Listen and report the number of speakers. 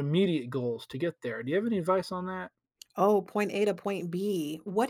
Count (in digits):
2